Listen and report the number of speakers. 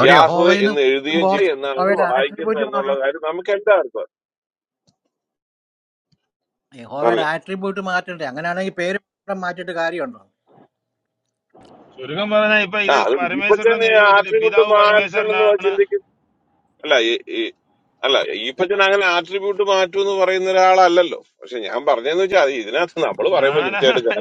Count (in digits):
3